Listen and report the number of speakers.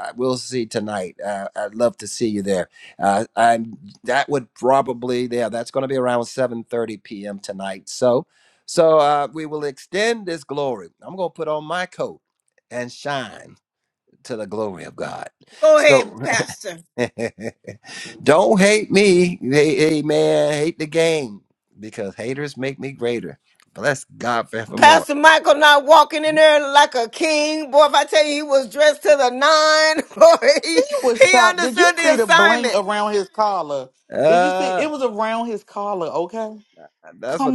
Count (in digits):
3